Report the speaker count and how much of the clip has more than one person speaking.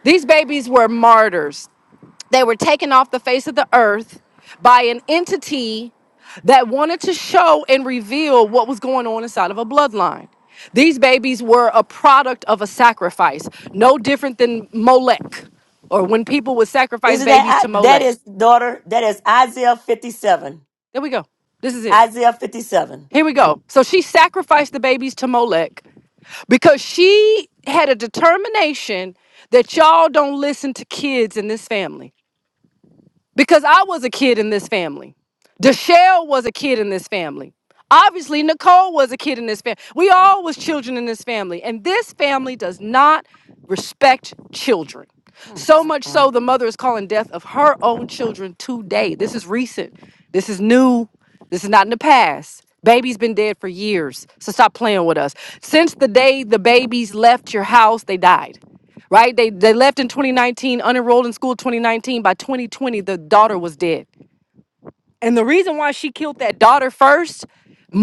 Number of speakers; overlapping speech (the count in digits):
2, about 2%